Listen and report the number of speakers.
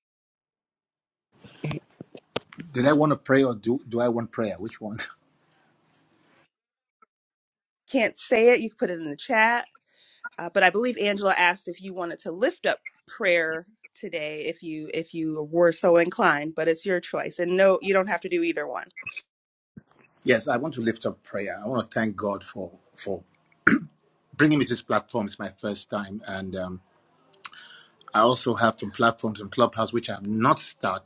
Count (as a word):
two